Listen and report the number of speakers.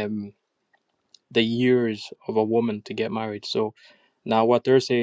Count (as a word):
one